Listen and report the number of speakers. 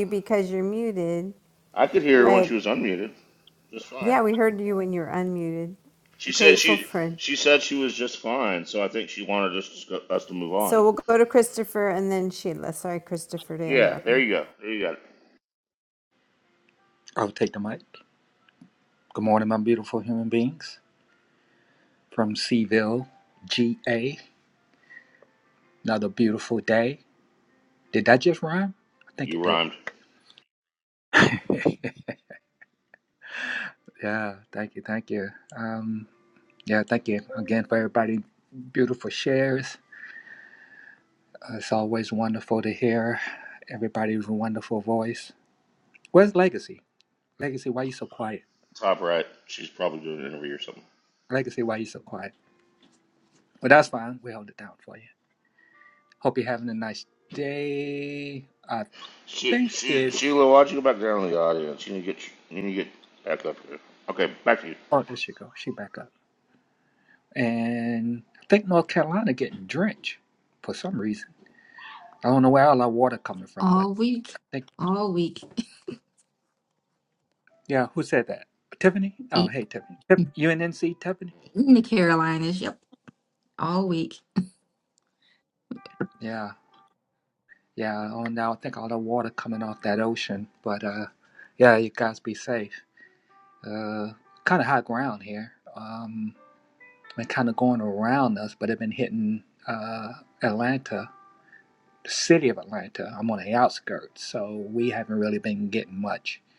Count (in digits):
4